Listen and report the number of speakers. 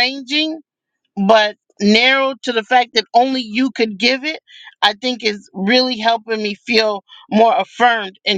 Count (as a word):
one